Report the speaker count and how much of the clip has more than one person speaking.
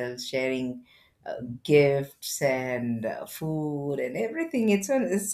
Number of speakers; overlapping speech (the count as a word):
one, no overlap